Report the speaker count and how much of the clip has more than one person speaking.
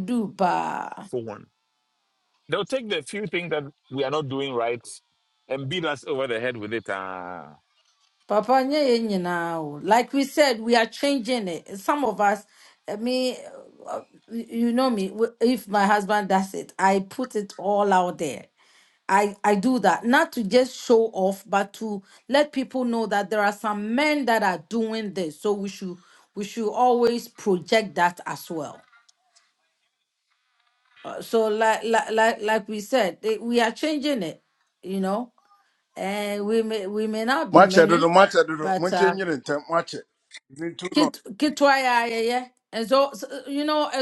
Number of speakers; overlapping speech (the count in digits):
3, about 3%